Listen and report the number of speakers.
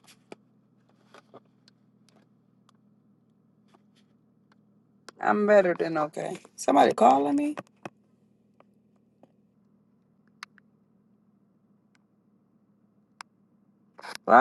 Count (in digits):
1